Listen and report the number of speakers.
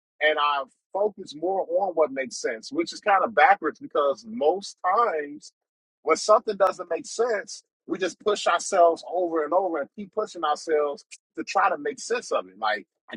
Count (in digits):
1